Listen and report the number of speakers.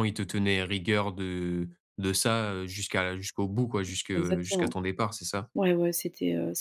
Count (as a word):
two